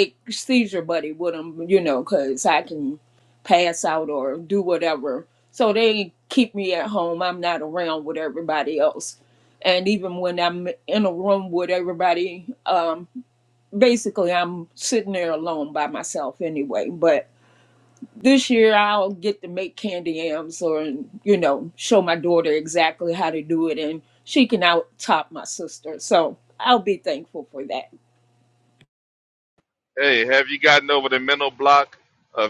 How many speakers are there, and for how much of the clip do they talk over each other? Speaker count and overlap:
2, no overlap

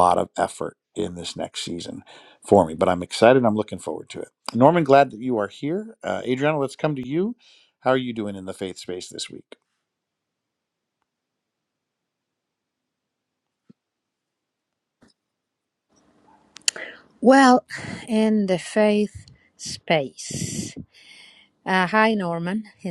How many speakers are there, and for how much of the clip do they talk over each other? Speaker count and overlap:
2, no overlap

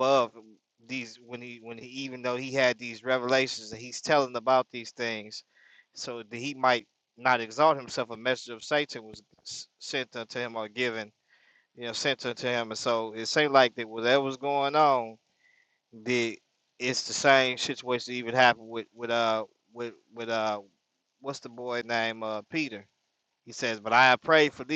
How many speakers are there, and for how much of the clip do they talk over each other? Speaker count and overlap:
1, no overlap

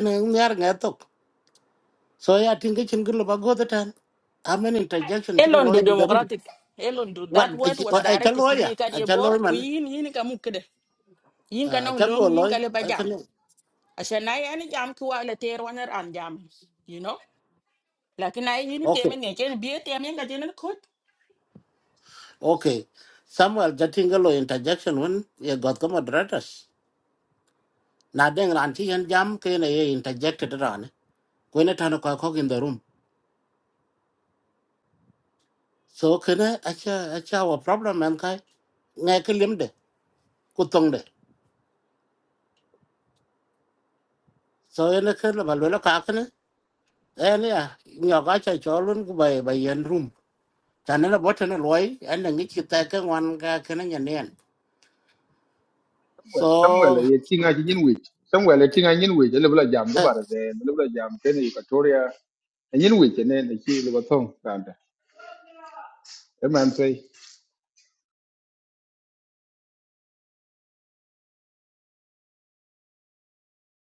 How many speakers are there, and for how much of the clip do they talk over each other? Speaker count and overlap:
3, about 7%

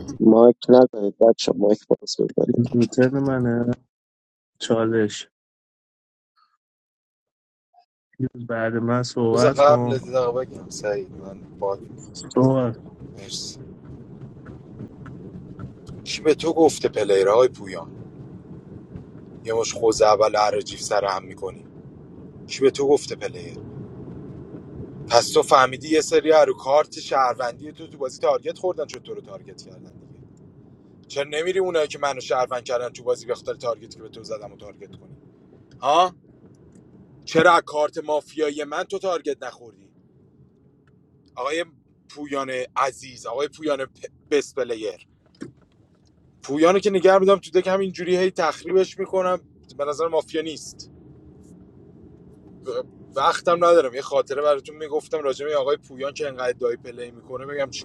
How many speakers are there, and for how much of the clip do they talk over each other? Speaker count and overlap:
3, about 1%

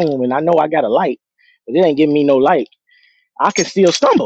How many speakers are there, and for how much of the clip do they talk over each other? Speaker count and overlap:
1, no overlap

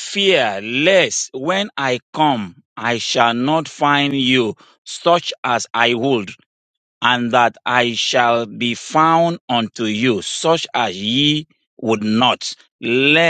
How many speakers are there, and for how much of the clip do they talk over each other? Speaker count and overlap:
1, no overlap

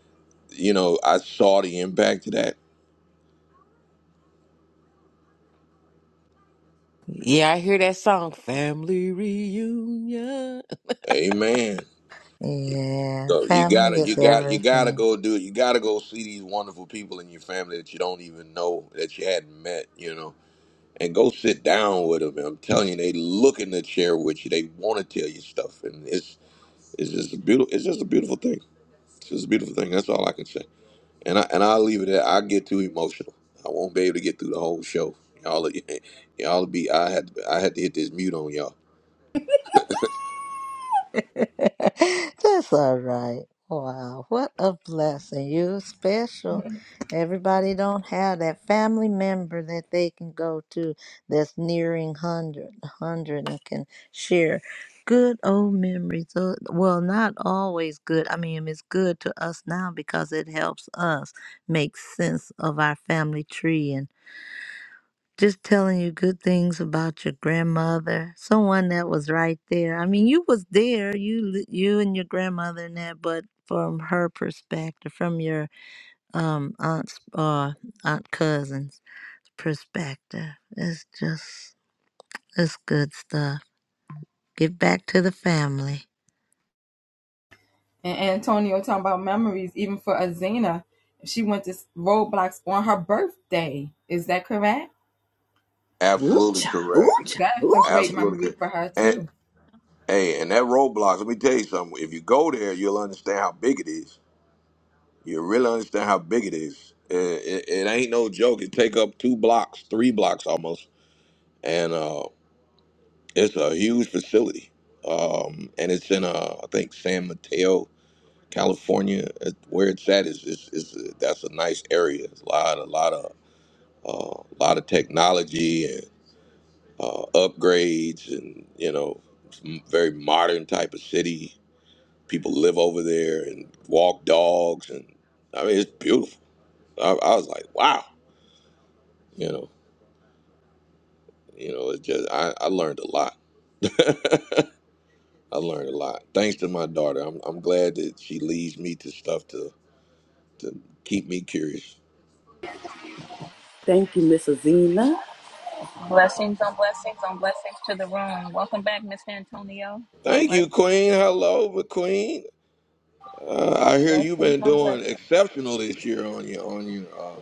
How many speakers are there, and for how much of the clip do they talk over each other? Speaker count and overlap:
6, about 3%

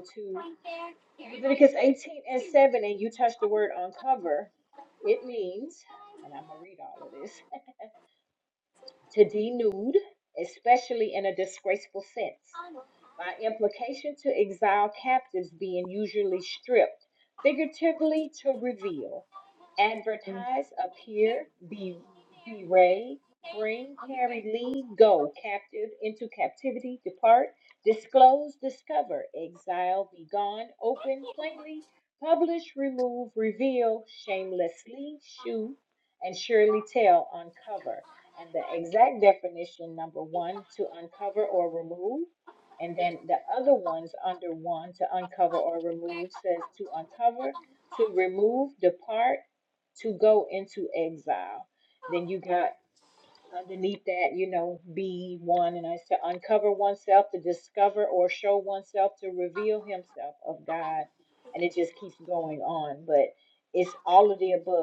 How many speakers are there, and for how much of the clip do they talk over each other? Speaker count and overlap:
1, no overlap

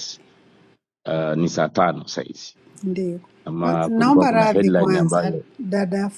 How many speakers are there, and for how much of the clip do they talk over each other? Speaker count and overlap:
2, about 29%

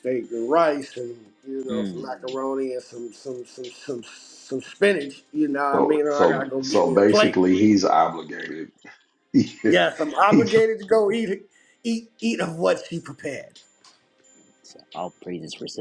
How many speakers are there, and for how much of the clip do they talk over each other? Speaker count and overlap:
3, about 15%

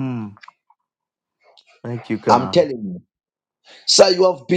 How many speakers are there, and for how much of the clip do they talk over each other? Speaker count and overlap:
2, about 7%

